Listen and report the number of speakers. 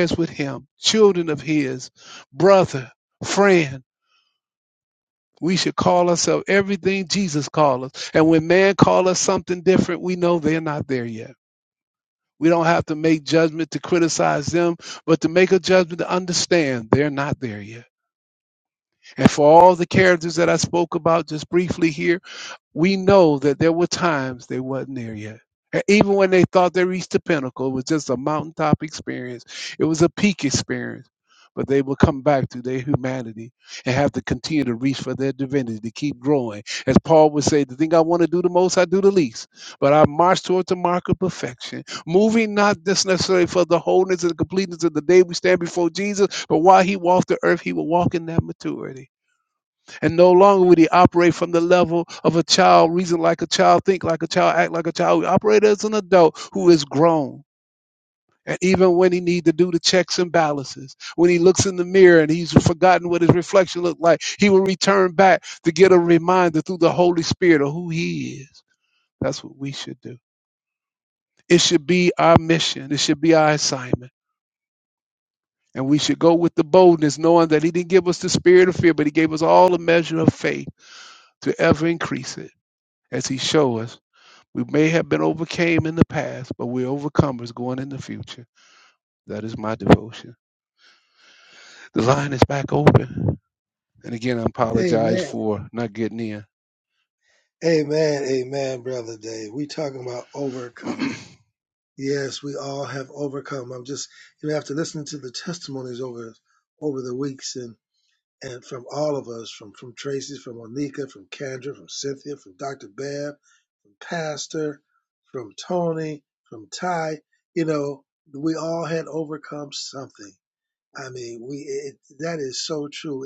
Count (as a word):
two